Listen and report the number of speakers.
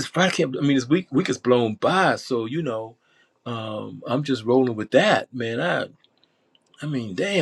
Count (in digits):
1